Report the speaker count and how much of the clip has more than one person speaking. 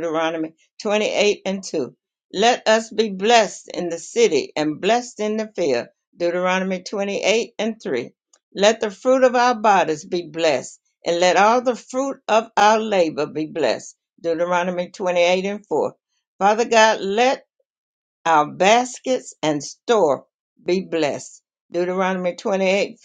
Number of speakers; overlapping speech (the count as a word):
one, no overlap